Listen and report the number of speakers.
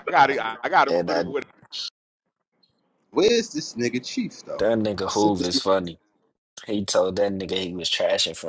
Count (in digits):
3